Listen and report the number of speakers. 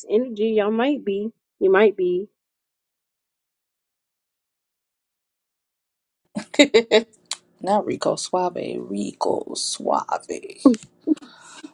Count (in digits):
2